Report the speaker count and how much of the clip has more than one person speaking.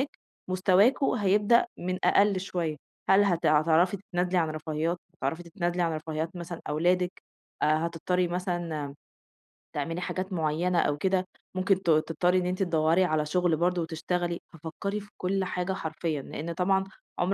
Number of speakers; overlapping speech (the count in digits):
1, no overlap